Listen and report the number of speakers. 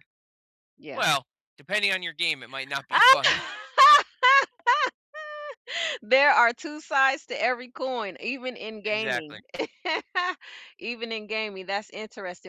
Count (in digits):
2